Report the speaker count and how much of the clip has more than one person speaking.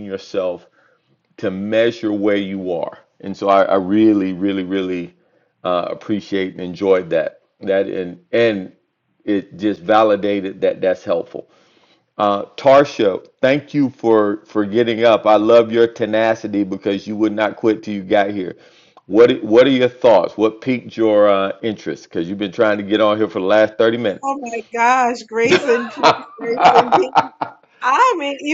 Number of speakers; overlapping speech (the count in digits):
2, no overlap